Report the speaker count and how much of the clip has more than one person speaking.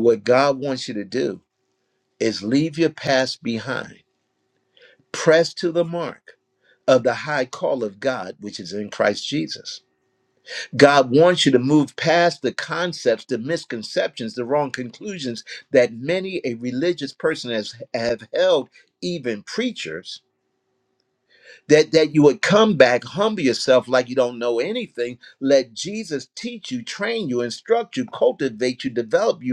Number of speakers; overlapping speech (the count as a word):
one, no overlap